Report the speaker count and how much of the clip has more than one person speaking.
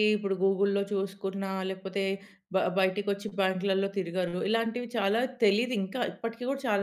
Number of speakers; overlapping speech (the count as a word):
one, no overlap